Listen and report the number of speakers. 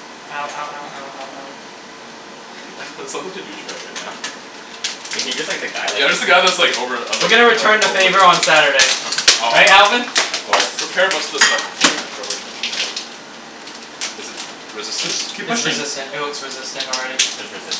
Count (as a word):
four